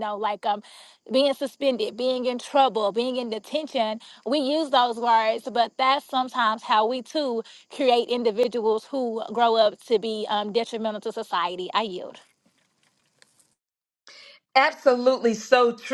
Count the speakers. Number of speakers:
2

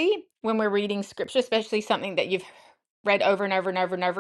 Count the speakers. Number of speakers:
1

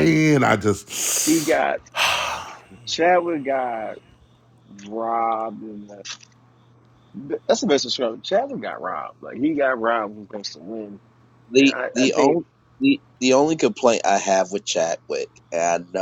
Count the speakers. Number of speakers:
3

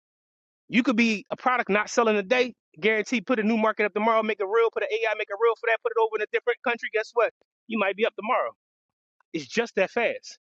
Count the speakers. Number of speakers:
1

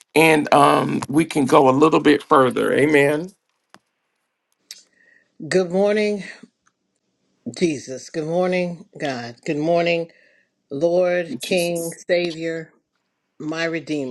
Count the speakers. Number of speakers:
2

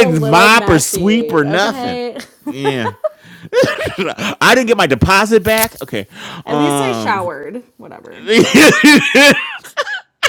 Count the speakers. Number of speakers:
2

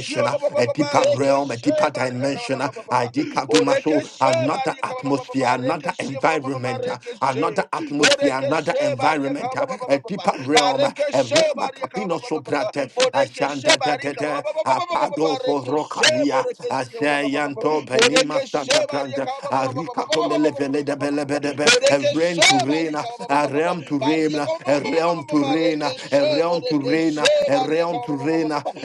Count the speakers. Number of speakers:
2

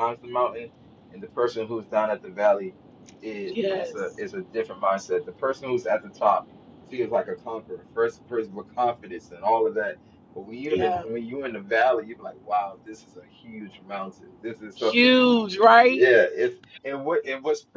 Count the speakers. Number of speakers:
2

